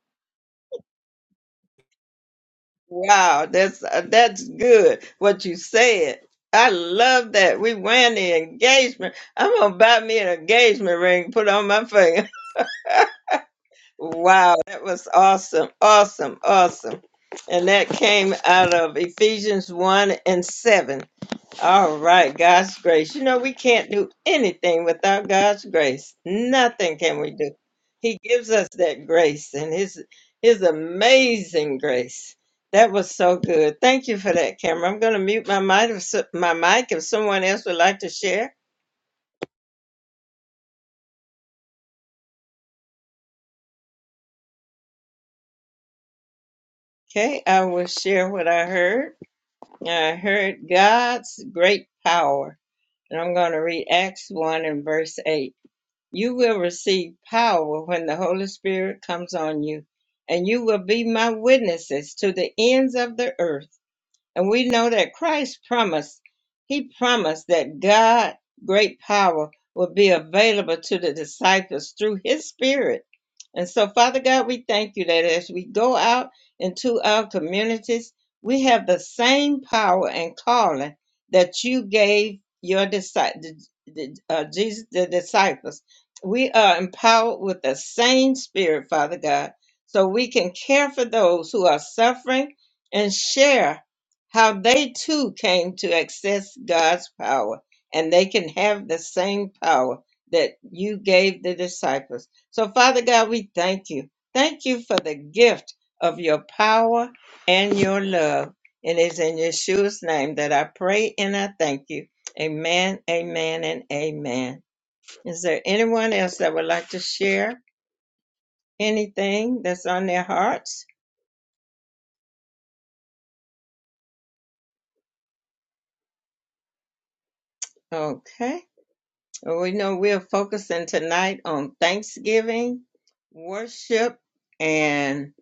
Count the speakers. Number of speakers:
1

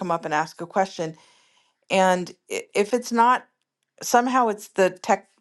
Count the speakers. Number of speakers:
1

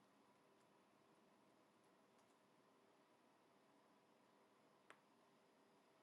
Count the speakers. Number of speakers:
0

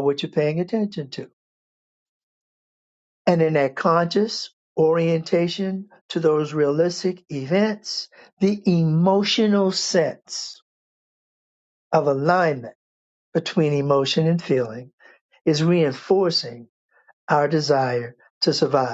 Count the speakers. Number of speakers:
1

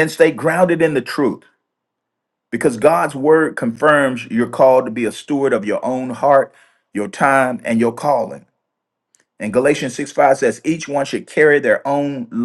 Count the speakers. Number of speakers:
1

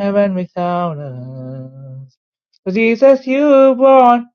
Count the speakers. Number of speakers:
1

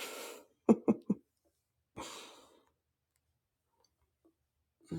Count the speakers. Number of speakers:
0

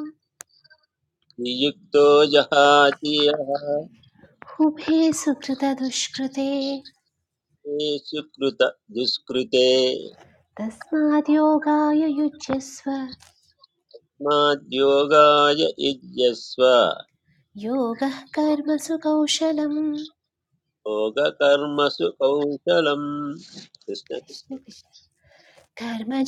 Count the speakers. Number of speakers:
2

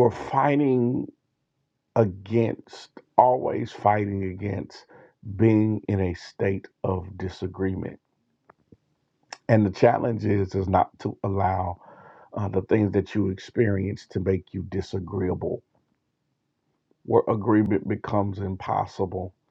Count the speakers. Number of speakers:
1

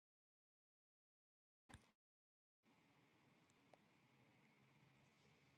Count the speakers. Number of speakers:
0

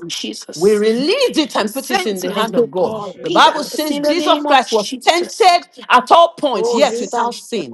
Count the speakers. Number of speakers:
2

